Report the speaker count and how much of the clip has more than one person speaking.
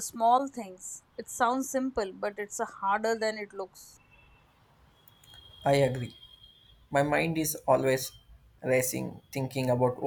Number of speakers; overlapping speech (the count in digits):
2, no overlap